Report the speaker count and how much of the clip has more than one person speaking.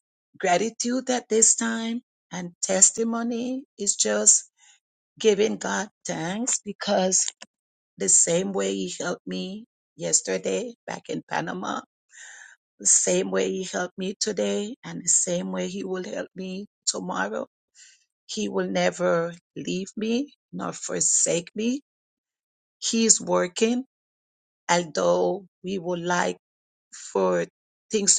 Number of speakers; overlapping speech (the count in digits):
1, no overlap